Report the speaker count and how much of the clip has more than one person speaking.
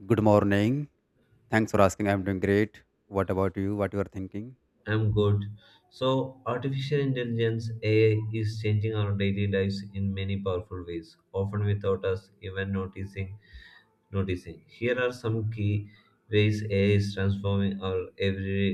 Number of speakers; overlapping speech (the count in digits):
2, no overlap